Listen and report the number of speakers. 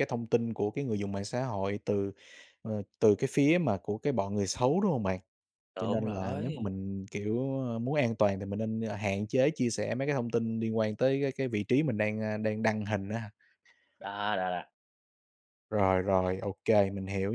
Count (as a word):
two